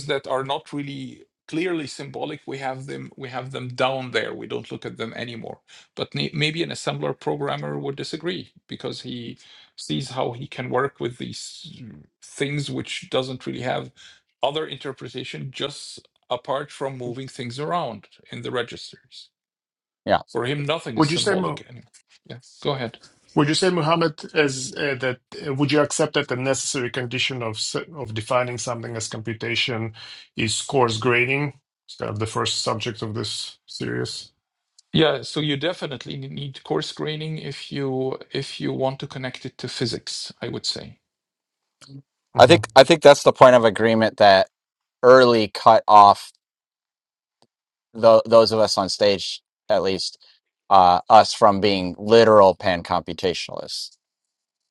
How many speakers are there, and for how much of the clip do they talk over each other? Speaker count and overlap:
three, about 2%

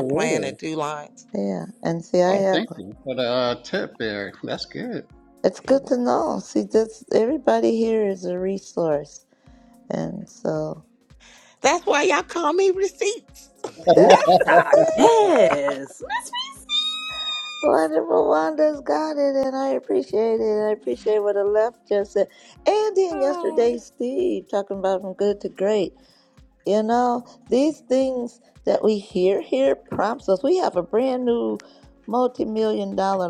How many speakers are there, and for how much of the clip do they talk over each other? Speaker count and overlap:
four, about 7%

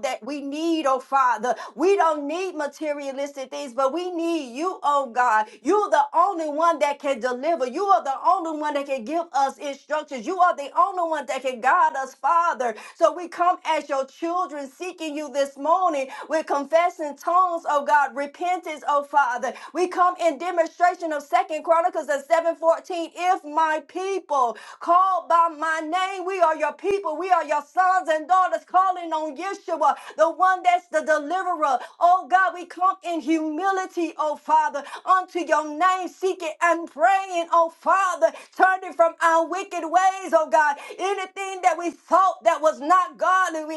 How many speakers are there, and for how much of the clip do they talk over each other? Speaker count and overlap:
one, no overlap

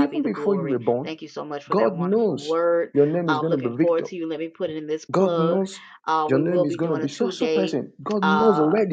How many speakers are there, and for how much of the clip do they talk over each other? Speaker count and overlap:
two, about 64%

